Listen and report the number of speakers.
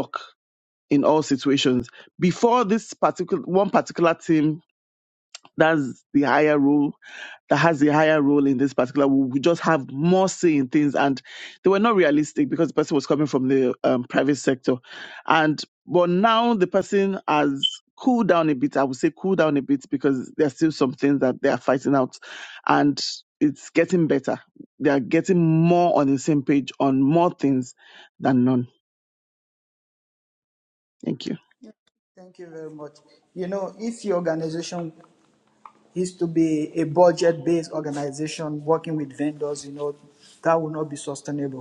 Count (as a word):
two